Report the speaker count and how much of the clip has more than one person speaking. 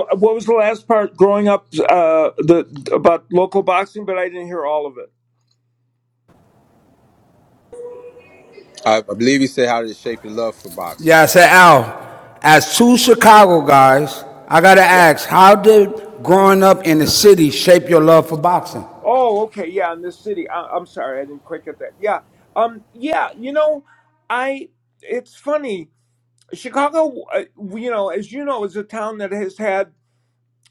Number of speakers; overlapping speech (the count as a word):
three, about 1%